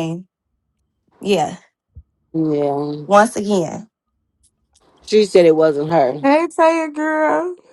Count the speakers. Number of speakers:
3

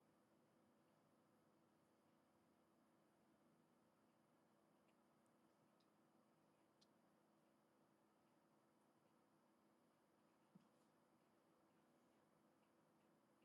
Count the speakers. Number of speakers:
0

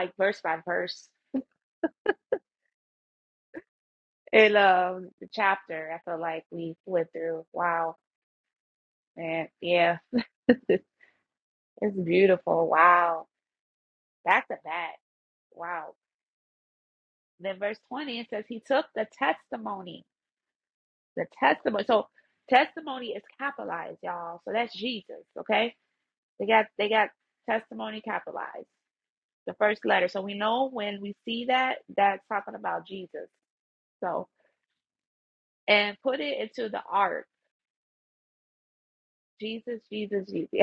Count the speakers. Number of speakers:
1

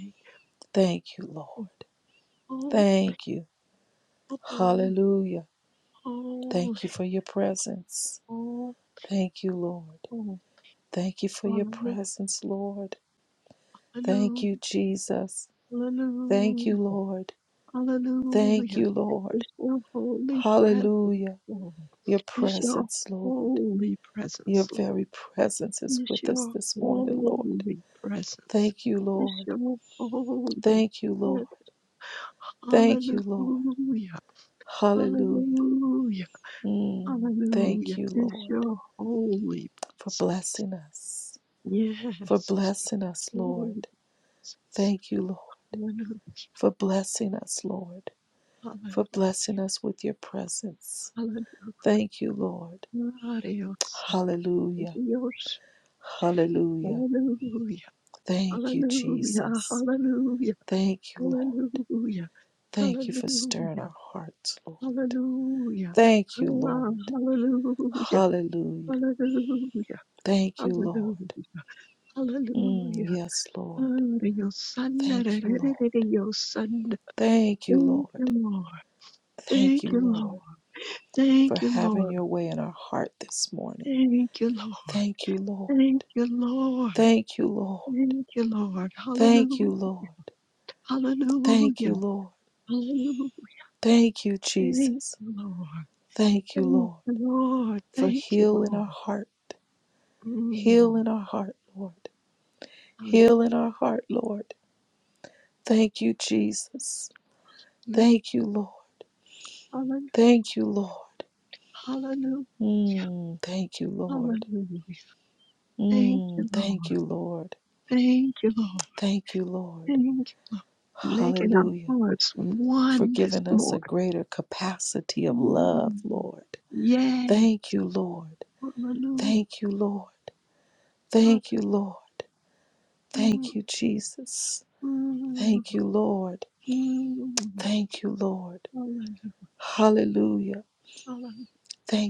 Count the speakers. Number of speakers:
2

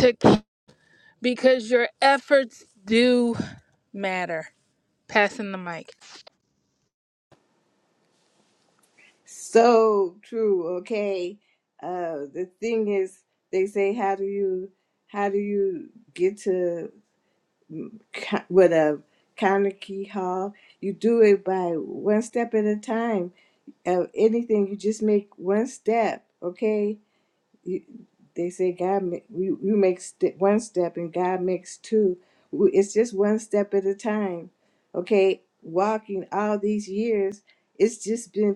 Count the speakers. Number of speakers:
2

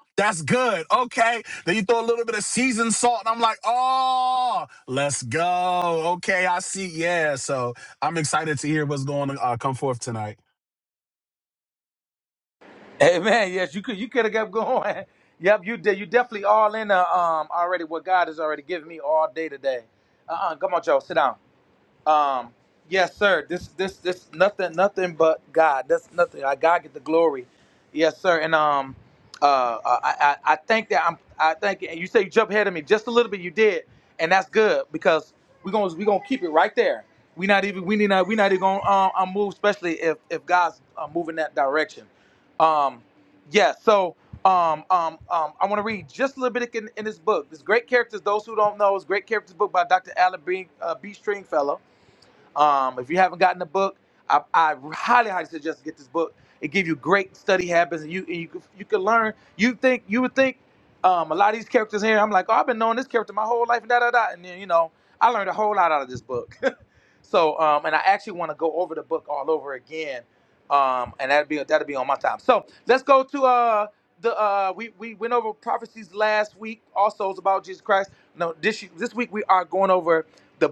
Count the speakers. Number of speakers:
2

